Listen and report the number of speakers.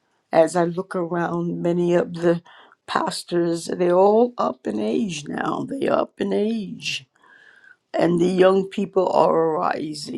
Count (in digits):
1